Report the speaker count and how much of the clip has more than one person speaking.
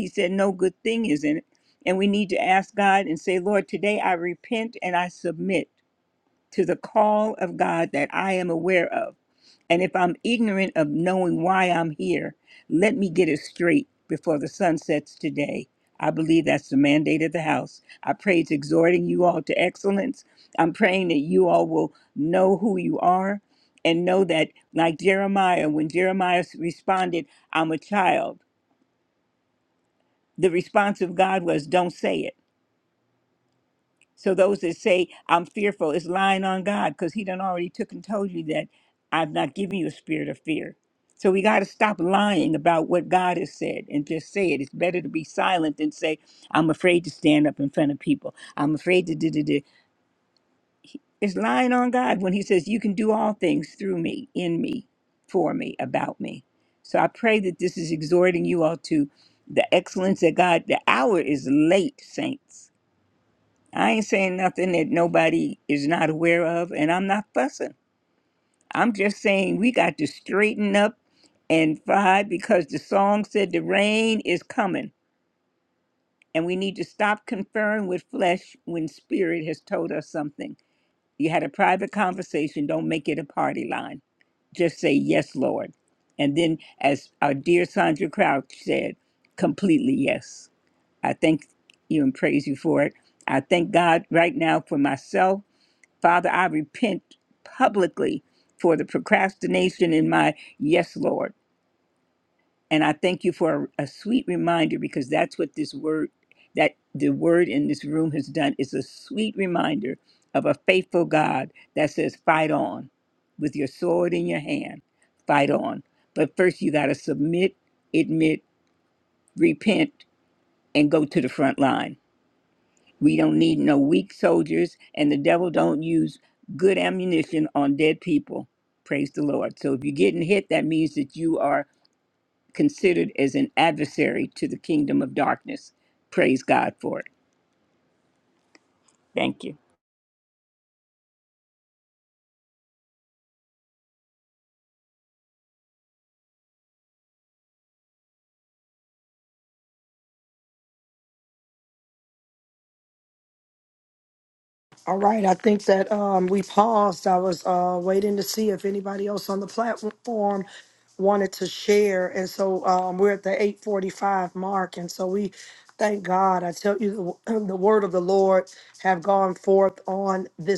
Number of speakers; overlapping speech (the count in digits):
2, no overlap